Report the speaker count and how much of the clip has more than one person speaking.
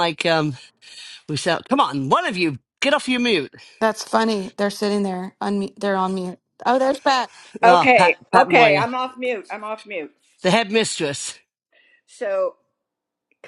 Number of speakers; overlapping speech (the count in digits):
3, about 9%